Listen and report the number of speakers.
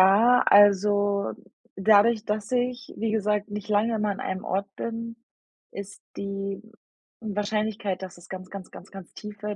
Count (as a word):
one